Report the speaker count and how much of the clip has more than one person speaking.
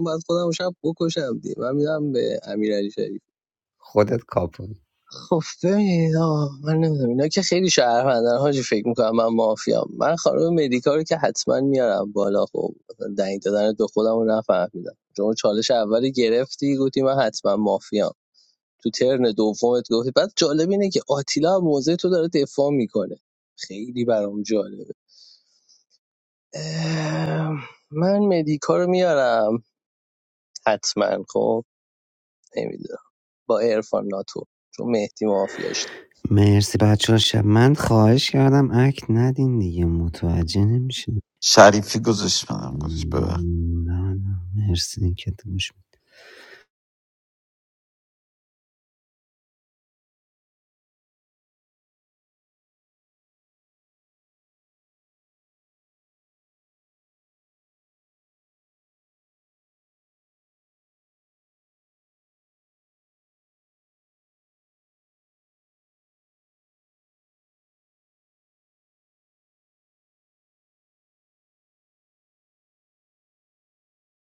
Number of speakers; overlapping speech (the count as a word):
three, no overlap